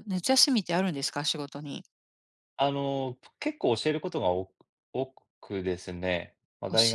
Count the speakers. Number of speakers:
2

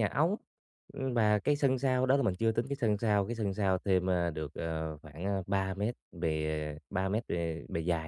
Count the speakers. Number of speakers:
1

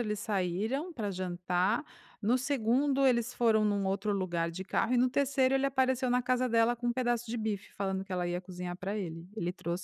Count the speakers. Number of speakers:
1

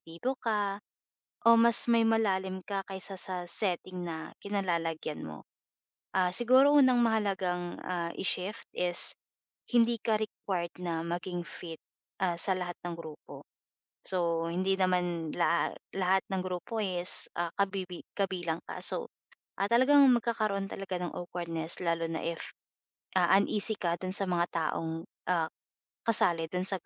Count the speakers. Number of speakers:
1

